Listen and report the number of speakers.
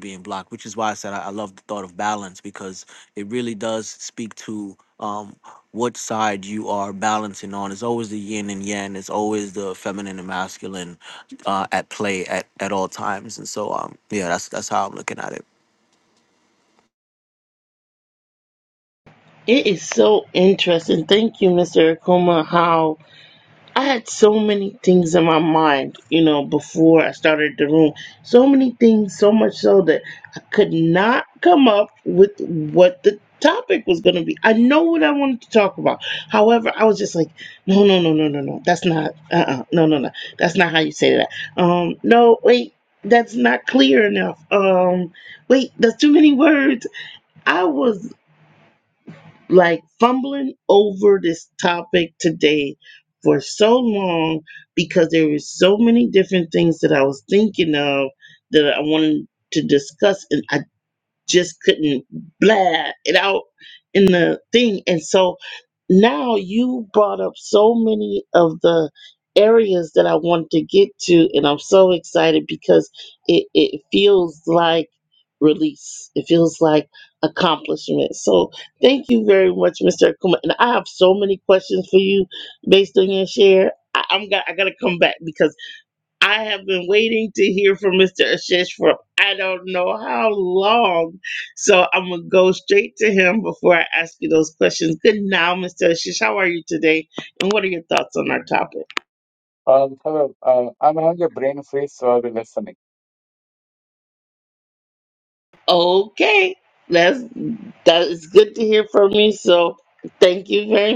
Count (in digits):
3